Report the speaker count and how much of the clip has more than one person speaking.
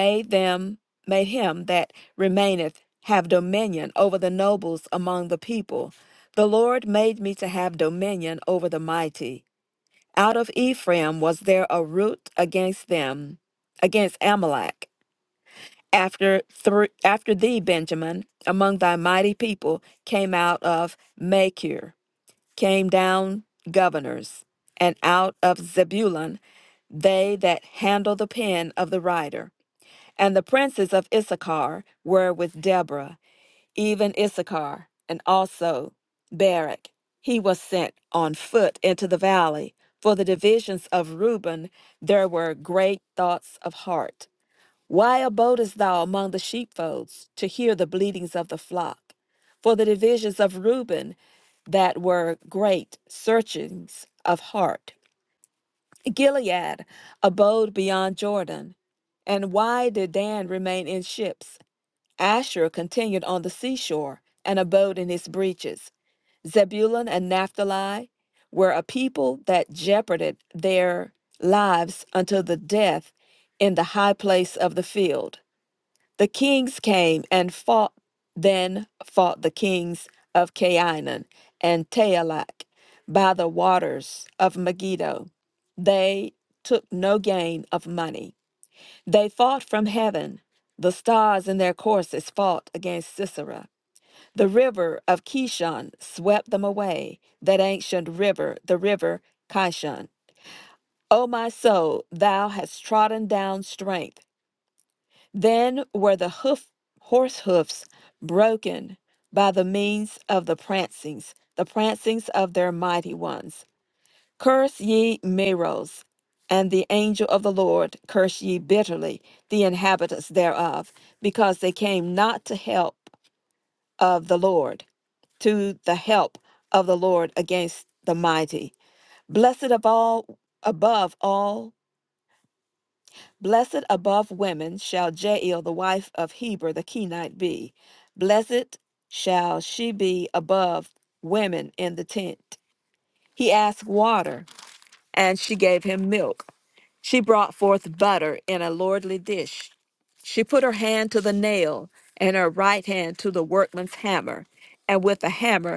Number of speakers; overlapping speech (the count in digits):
1, no overlap